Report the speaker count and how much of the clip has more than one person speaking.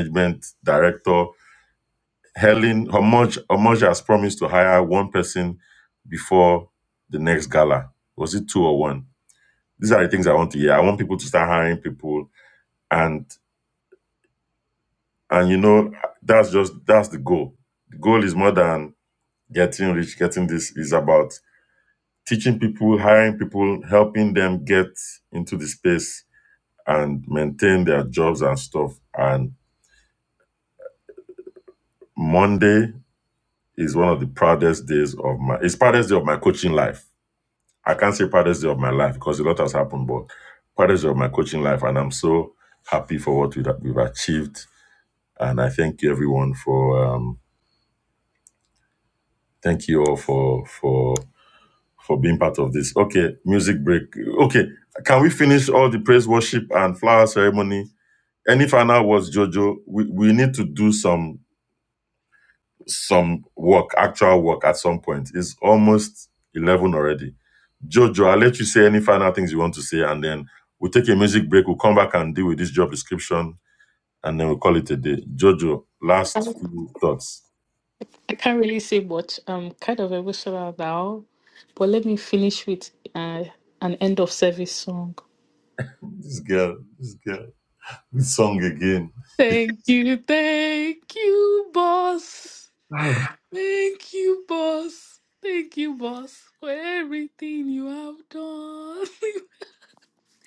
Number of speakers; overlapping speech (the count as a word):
two, under 1%